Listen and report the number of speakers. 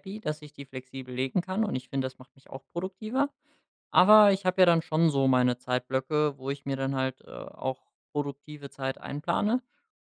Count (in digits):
1